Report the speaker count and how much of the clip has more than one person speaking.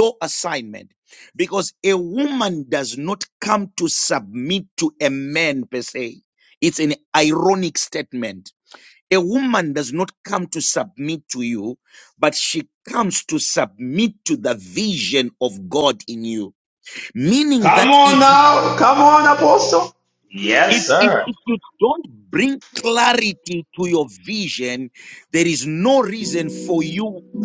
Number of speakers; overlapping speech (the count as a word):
two, about 5%